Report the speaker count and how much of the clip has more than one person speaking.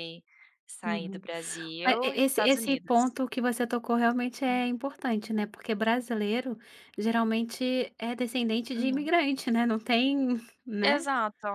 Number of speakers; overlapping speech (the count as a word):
two, about 17%